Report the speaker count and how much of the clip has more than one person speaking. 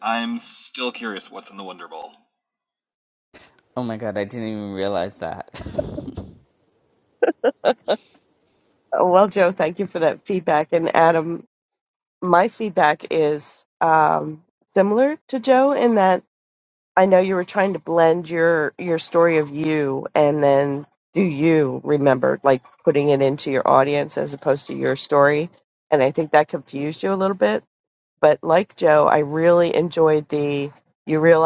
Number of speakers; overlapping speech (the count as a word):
three, no overlap